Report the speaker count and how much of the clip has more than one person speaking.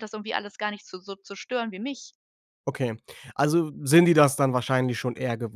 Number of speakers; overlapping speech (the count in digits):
2, no overlap